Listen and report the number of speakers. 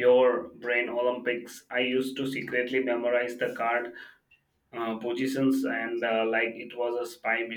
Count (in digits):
1